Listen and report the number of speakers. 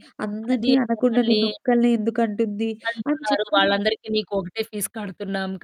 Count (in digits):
2